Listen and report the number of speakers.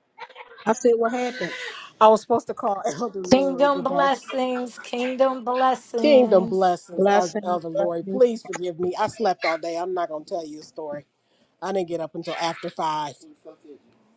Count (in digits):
3